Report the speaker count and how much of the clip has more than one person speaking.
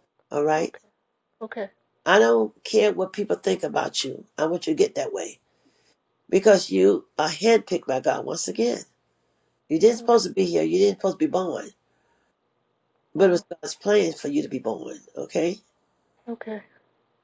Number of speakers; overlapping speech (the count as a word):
two, about 3%